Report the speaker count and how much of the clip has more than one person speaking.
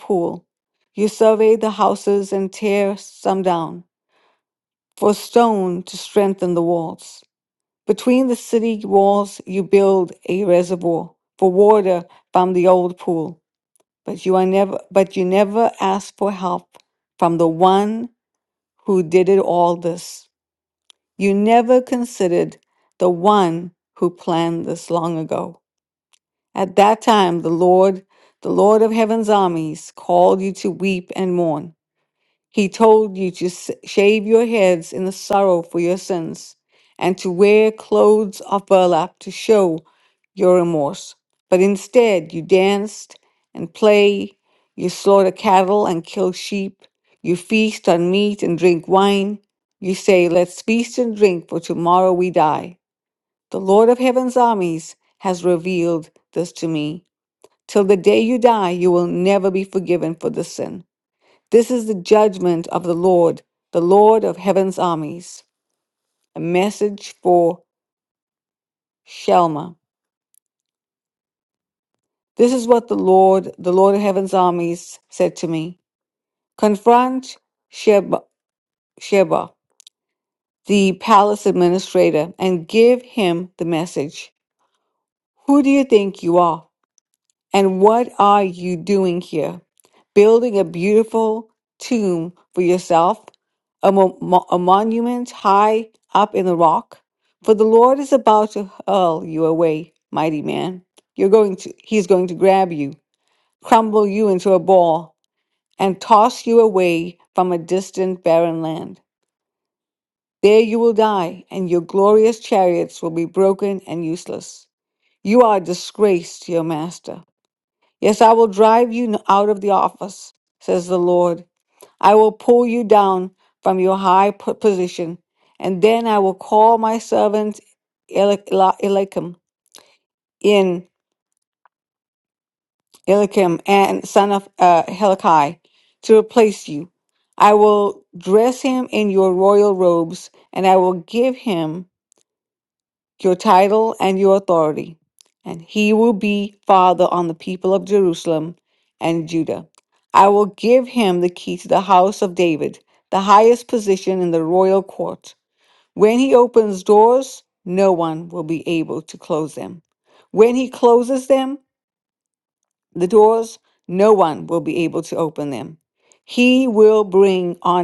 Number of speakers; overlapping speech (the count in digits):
1, no overlap